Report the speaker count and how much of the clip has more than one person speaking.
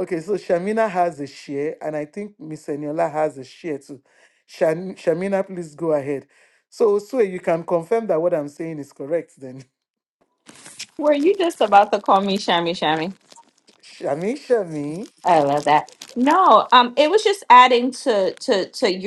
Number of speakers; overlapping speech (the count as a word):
two, no overlap